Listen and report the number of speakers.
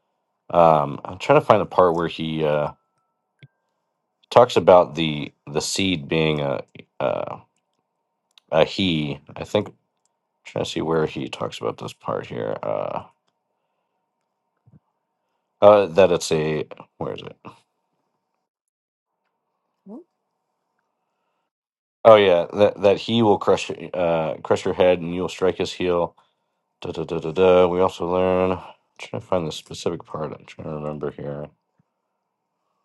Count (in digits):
1